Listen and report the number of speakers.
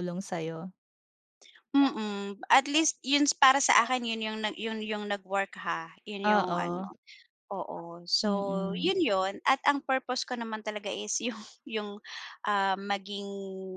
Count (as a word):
two